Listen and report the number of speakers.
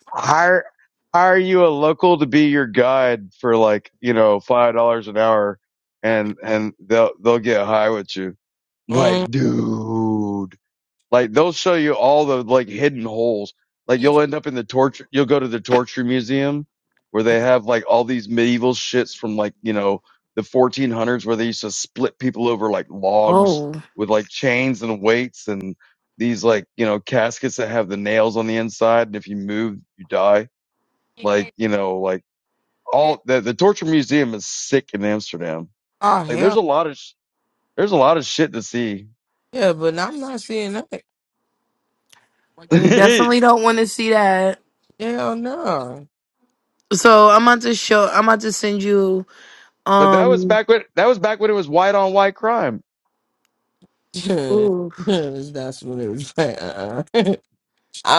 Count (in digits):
3